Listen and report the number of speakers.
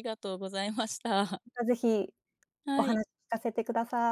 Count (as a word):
two